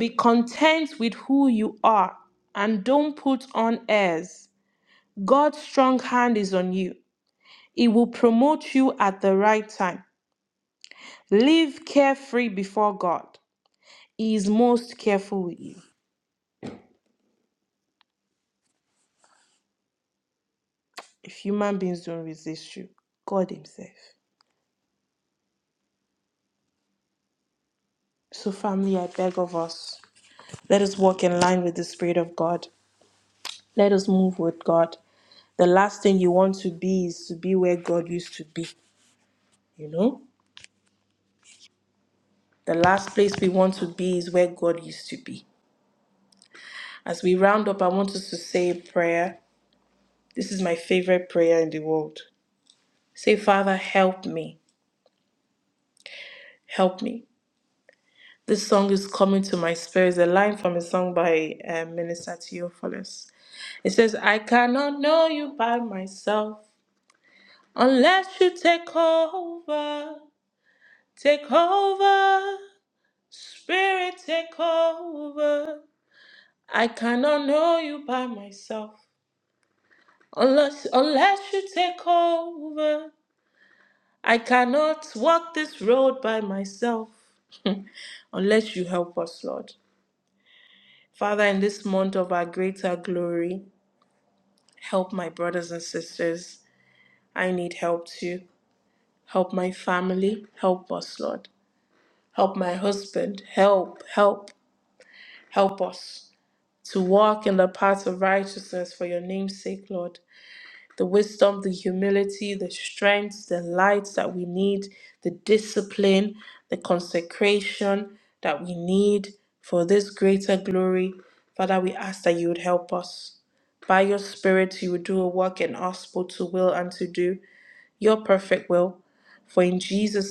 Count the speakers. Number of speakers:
1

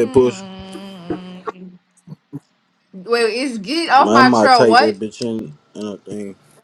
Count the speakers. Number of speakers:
2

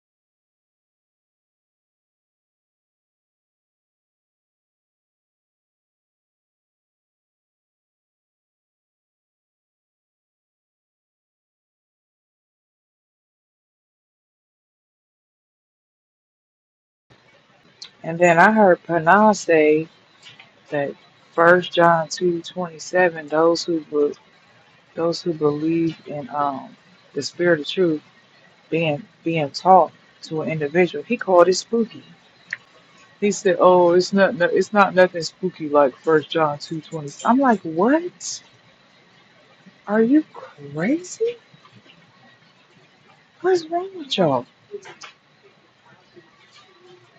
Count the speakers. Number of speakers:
1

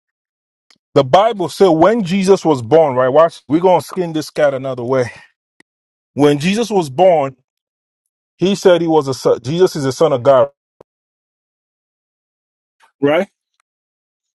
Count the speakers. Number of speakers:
1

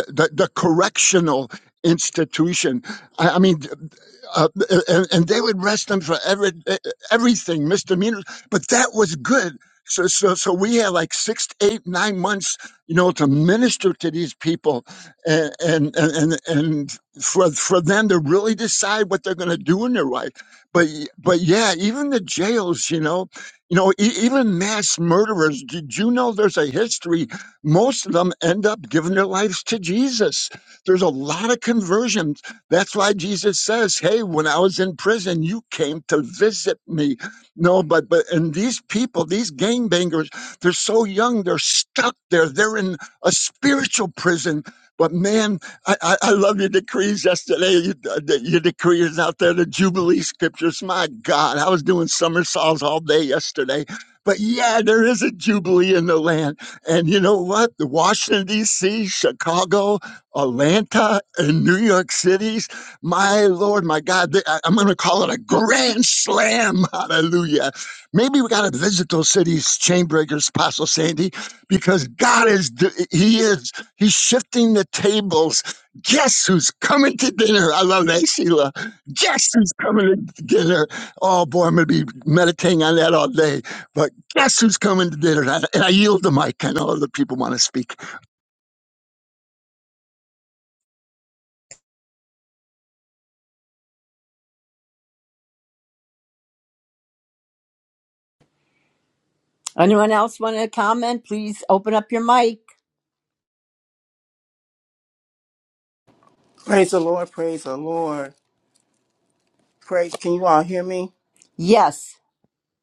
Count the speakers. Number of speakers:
3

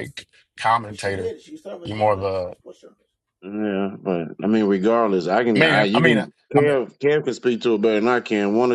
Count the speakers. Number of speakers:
3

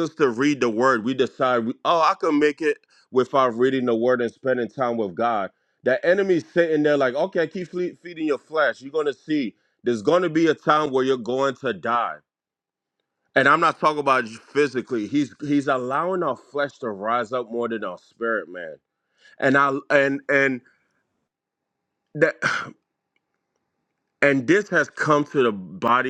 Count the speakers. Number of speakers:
1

